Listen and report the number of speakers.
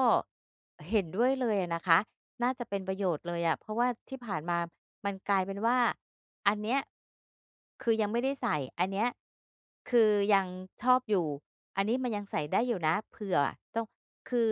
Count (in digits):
1